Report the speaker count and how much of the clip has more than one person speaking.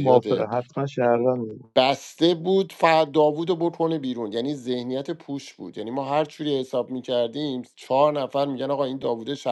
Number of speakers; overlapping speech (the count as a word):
two, about 5%